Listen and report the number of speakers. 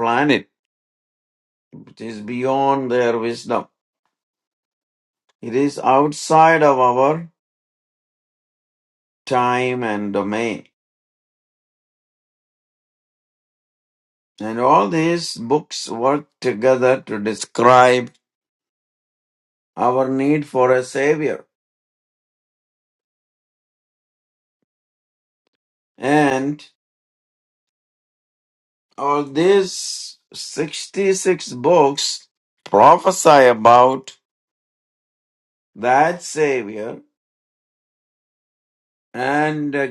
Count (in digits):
1